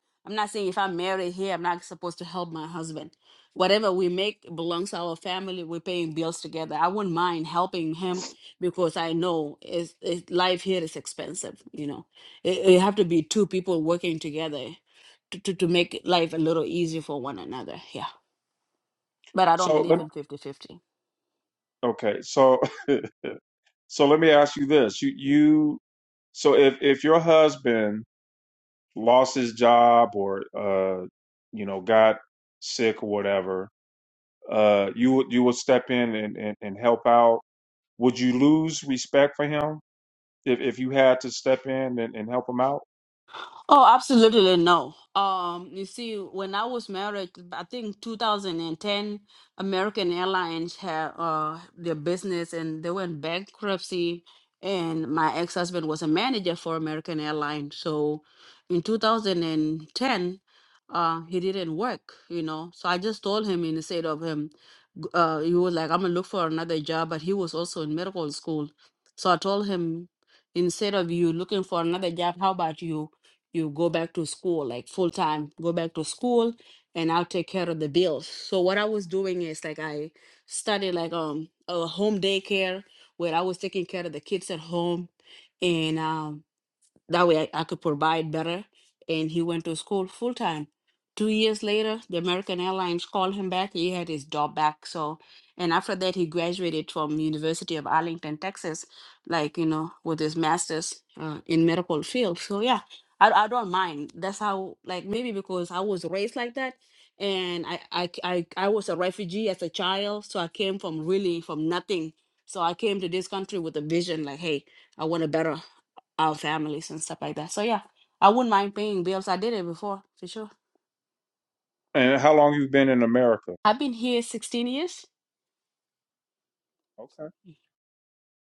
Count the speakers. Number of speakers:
2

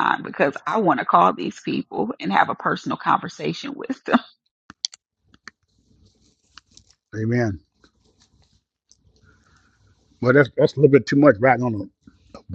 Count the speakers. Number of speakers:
2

